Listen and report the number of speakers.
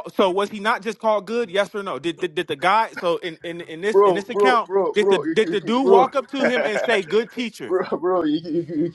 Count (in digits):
2